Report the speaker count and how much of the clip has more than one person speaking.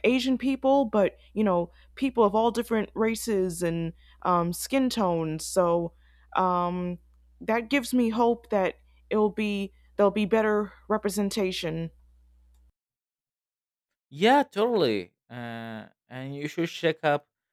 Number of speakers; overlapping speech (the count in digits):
2, no overlap